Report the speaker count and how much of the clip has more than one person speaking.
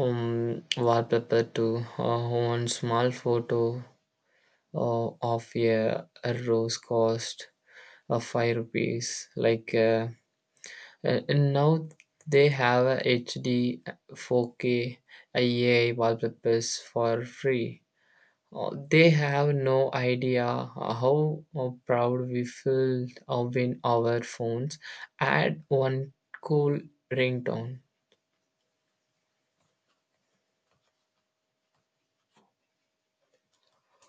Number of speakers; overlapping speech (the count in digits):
1, no overlap